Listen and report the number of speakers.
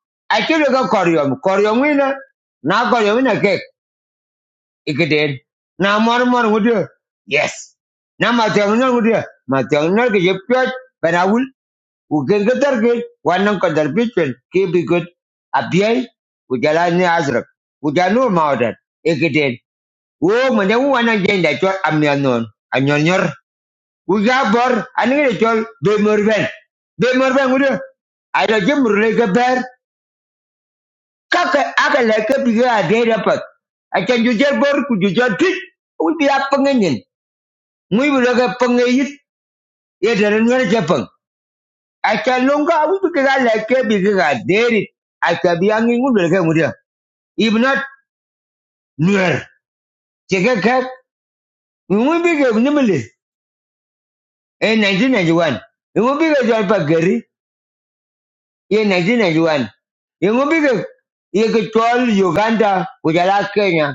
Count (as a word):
one